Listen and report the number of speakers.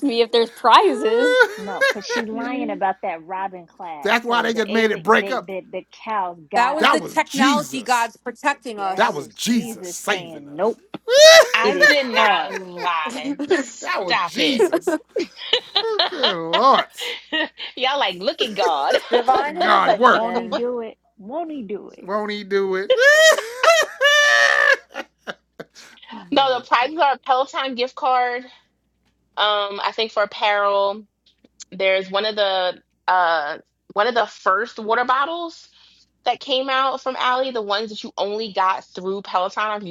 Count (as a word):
five